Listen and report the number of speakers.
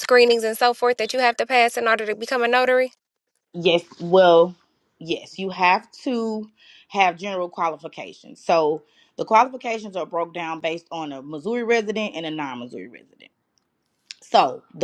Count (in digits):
2